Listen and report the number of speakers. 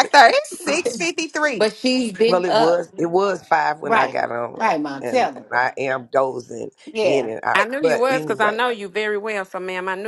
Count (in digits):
4